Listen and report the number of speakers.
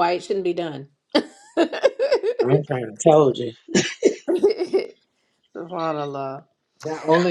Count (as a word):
two